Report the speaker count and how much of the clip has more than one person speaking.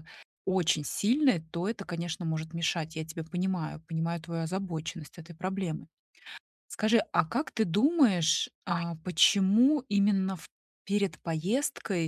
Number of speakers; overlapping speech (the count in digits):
1, no overlap